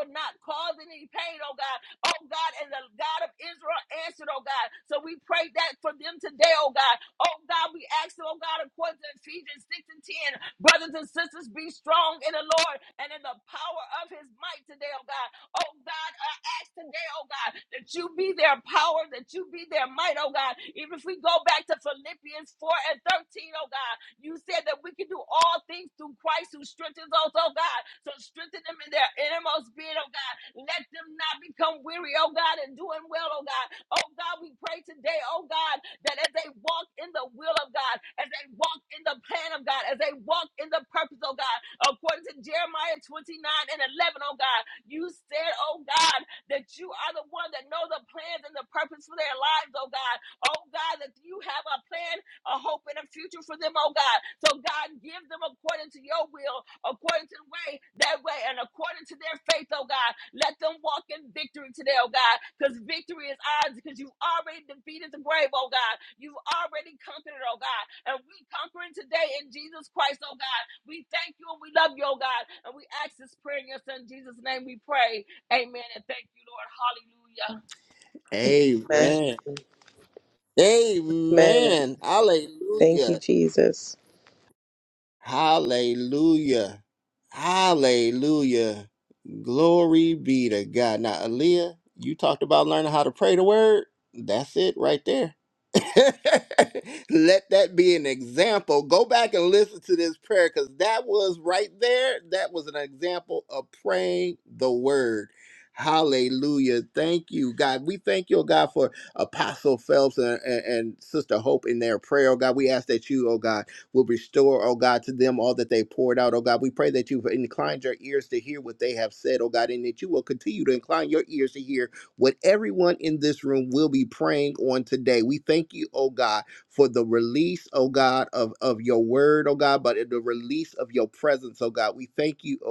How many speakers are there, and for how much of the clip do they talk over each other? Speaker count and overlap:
3, under 1%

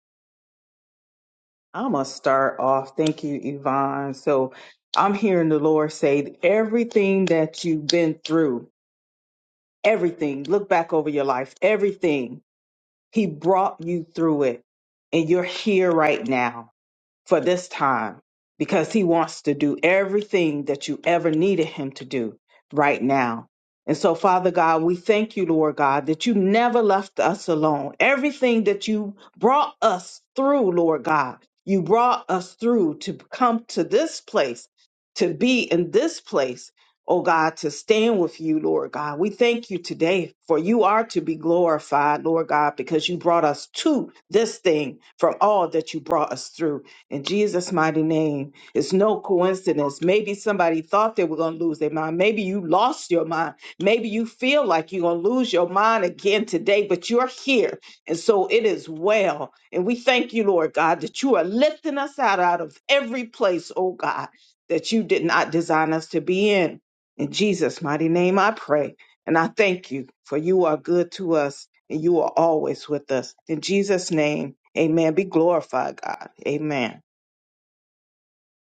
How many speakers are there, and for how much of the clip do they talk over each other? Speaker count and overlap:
1, no overlap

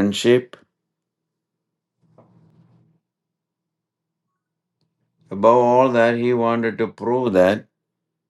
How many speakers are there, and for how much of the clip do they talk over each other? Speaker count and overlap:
1, no overlap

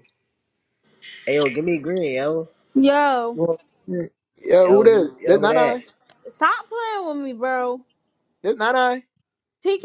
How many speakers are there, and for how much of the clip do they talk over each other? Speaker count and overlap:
3, about 12%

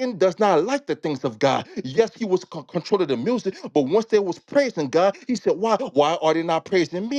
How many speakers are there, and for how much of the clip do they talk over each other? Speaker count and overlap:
1, no overlap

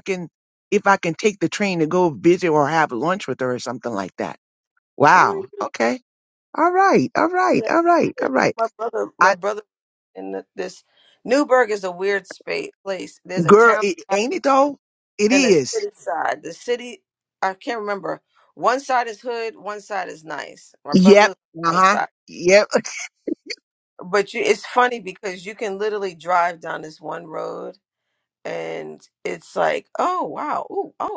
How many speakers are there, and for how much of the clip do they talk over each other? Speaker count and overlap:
2, about 11%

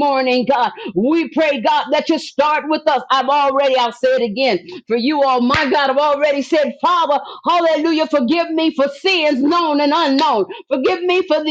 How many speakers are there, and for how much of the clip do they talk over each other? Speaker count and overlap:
1, no overlap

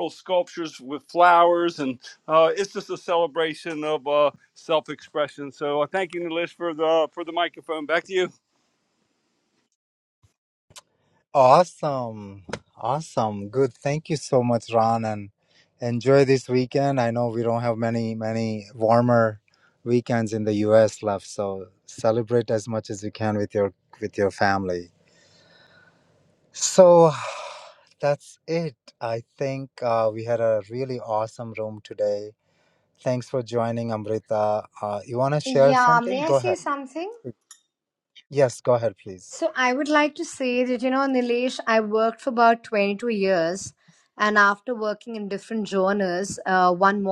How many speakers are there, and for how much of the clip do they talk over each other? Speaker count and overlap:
3, about 2%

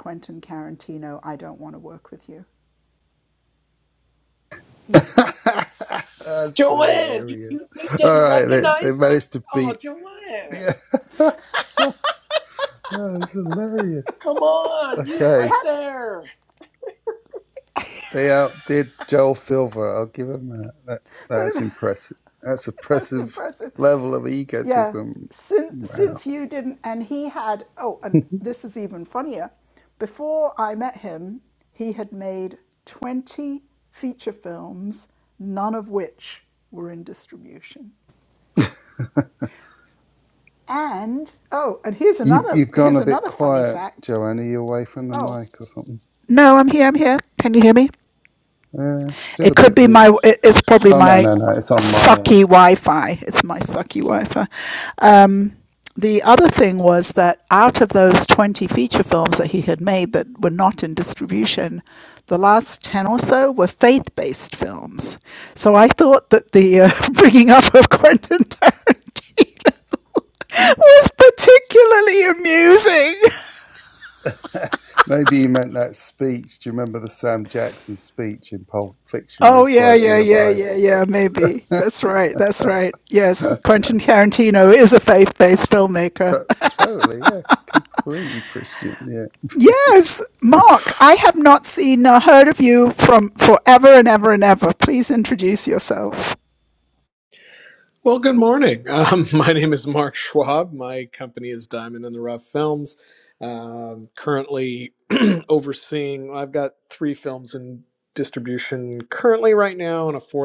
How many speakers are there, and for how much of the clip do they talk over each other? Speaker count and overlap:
4, about 9%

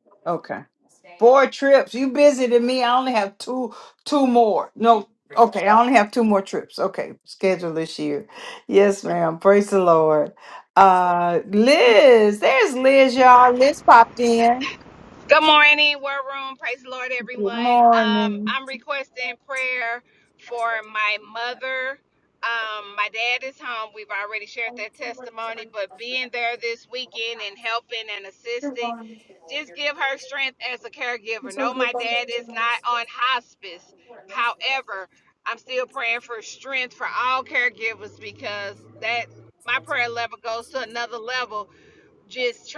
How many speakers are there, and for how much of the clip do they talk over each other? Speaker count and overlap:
2, about 3%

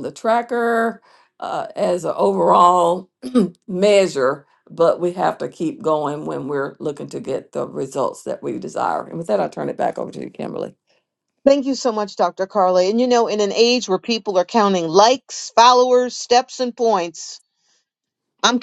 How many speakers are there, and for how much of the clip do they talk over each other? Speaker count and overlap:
2, no overlap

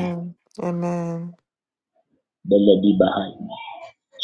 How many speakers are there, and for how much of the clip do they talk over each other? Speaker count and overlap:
2, about 3%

